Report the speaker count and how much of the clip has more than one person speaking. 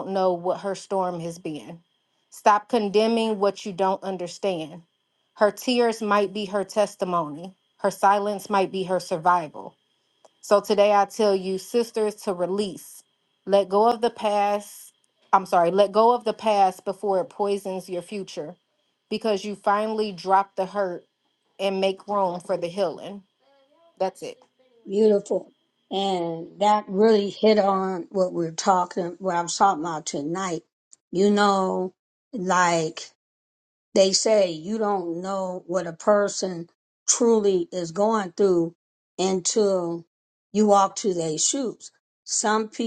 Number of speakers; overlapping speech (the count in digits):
2, no overlap